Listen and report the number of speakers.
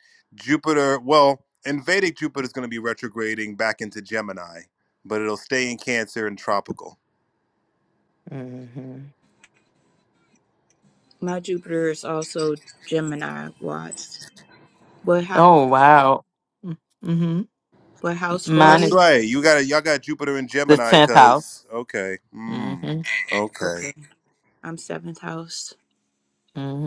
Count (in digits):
3